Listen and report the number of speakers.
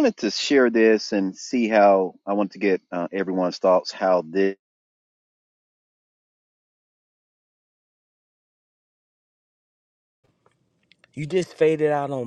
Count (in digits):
2